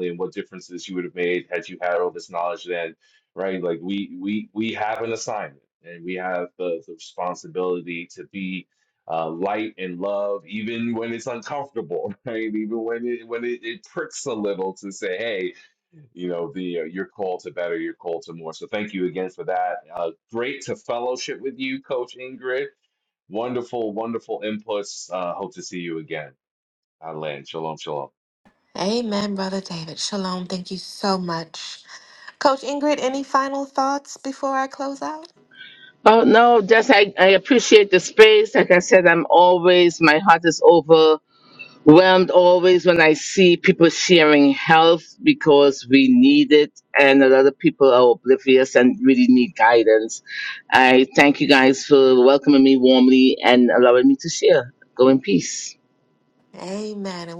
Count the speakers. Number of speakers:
3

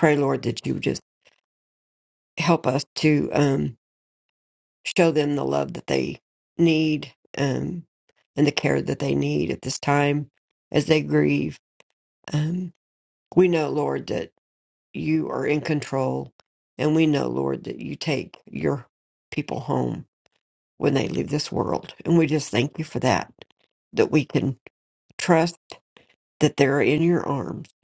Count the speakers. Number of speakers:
1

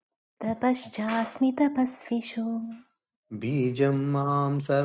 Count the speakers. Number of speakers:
2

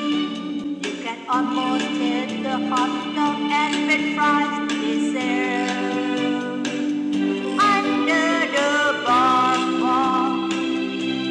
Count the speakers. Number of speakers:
1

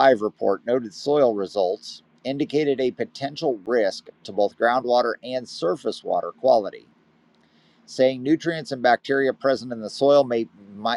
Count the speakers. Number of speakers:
1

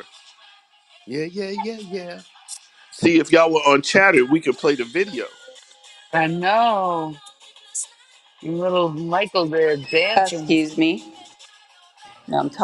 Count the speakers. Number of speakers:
3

